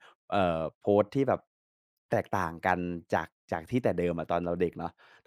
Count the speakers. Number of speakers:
1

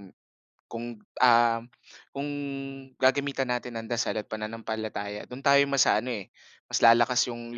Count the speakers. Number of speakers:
1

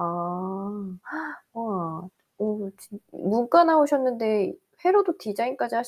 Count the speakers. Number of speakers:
1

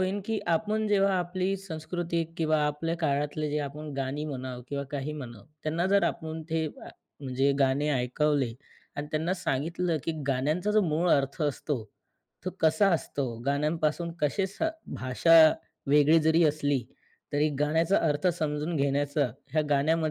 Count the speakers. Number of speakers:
1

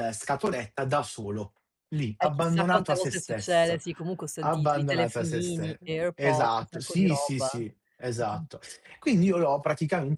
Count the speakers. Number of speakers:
2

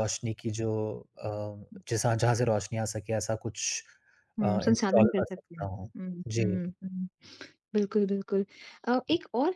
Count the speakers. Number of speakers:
2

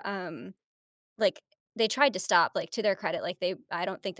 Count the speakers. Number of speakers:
1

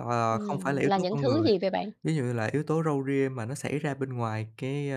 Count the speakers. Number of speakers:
2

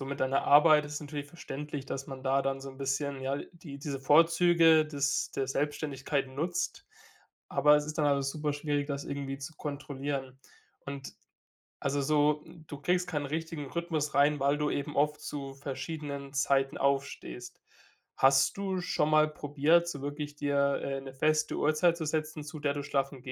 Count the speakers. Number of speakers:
1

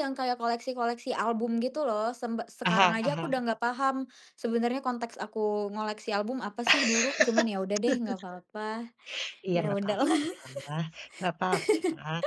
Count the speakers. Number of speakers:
2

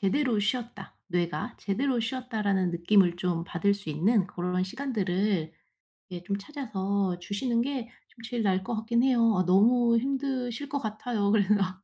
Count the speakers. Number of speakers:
1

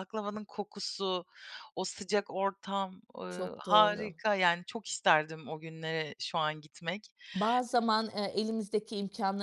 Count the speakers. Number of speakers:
2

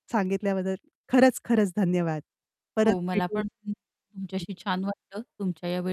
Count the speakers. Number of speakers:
2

